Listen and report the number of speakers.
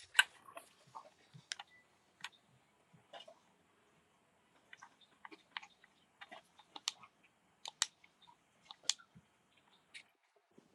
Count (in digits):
0